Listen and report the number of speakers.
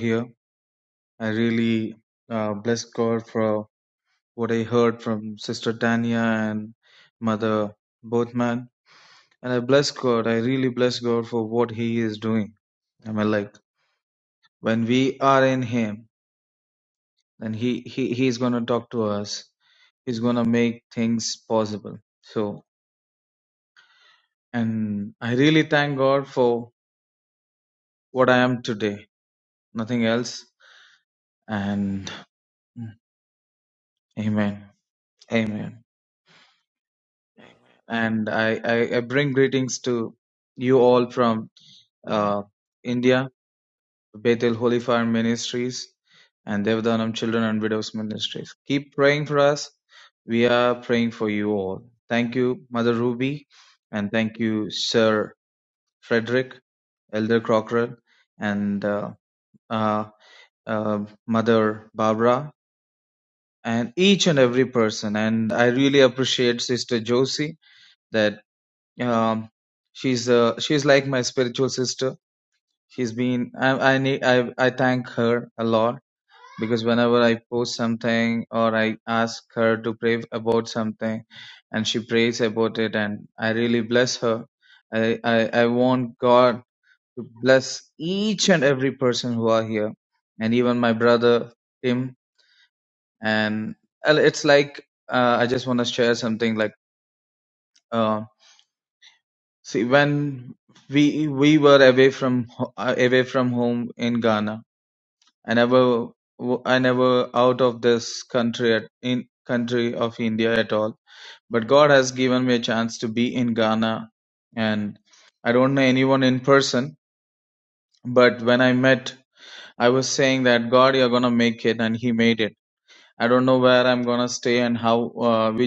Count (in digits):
1